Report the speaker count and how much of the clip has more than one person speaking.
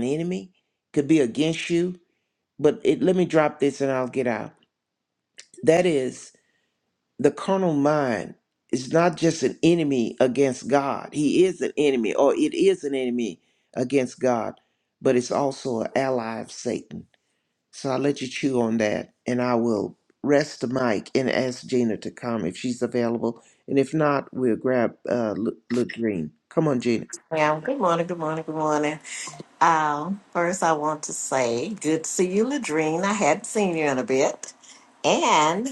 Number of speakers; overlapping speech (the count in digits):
2, no overlap